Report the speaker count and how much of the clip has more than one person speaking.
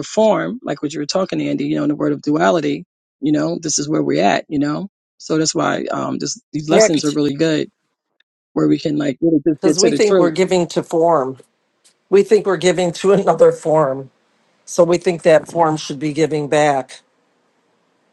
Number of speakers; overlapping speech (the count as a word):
two, about 5%